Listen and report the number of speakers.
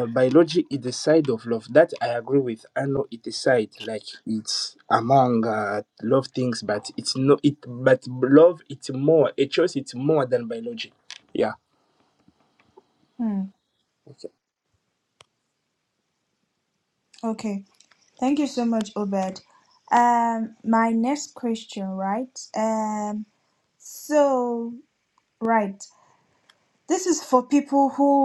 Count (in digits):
2